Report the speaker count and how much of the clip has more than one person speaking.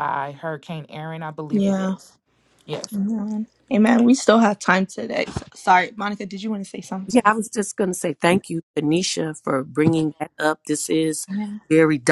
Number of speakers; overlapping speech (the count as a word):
three, about 5%